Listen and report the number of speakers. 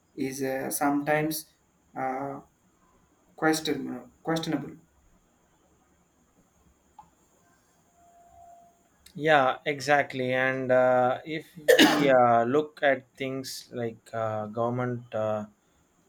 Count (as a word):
two